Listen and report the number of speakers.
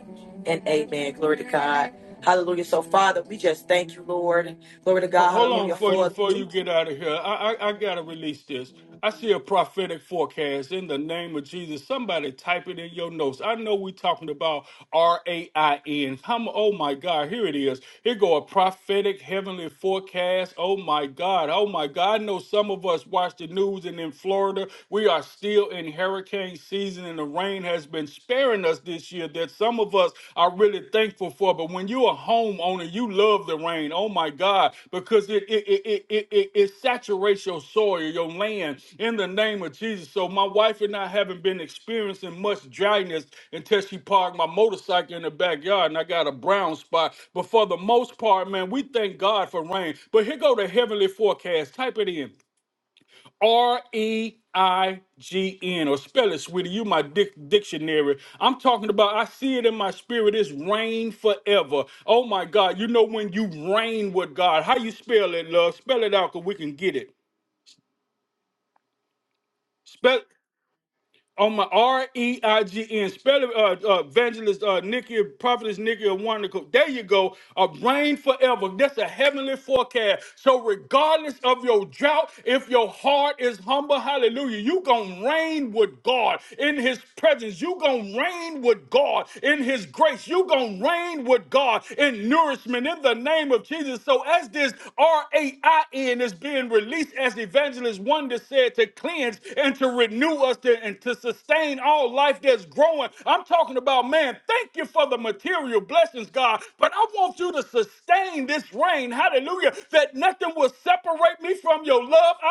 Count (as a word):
two